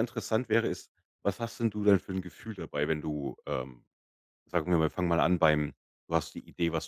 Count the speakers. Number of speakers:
1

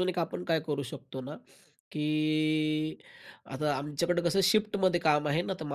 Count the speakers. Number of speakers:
1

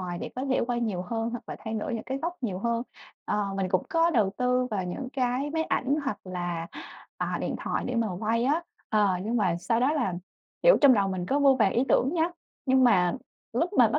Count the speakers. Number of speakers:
1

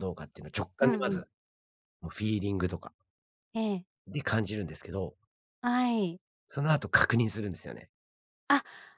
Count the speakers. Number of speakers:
2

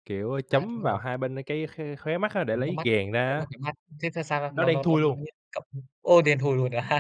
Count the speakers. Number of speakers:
2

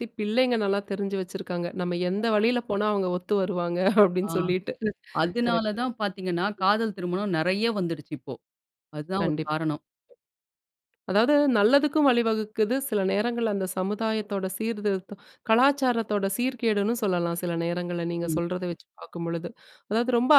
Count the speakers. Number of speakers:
2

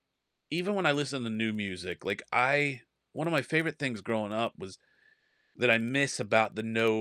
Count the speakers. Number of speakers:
1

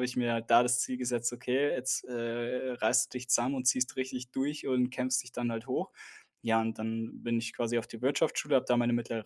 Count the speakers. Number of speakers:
1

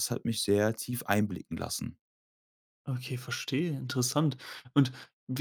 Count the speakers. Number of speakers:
2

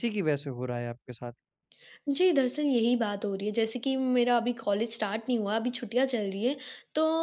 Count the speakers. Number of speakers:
2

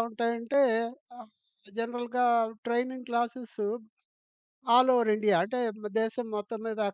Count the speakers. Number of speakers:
1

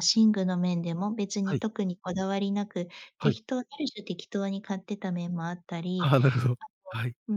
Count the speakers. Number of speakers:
2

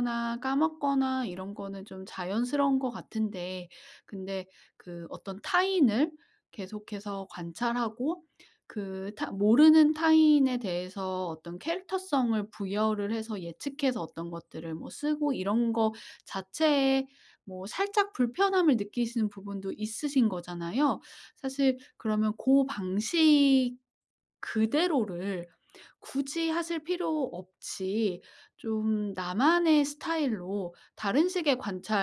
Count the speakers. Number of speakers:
1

